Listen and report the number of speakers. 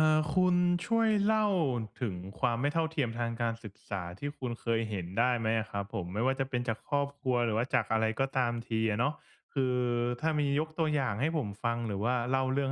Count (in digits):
1